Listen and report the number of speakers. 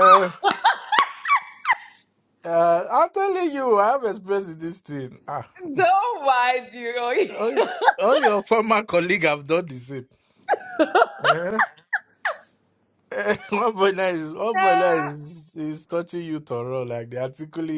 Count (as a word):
two